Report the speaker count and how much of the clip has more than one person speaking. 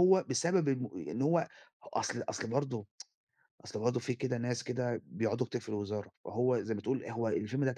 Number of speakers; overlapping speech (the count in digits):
1, no overlap